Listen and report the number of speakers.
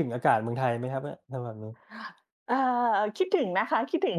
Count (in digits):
2